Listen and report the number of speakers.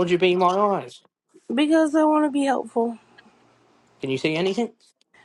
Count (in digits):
2